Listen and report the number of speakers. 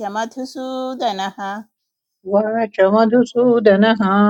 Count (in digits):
2